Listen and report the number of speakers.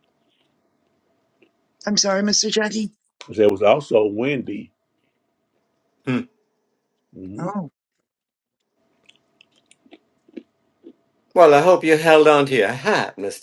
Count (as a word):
three